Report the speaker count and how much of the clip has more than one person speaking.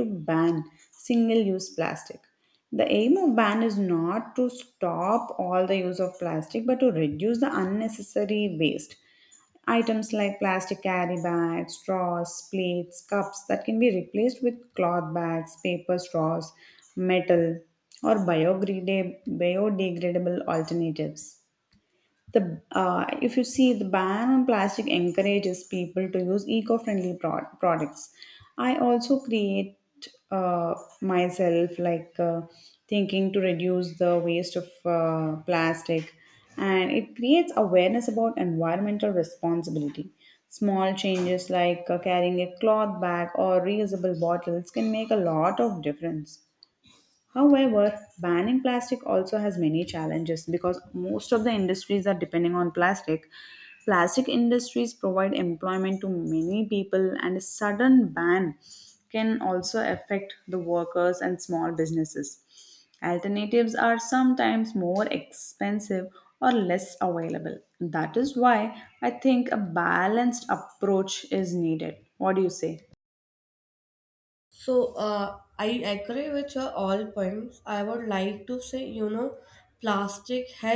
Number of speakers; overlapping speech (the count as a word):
two, no overlap